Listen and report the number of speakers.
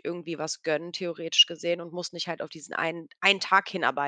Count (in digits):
1